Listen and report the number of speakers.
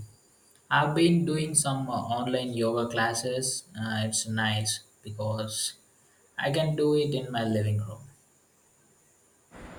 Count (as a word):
one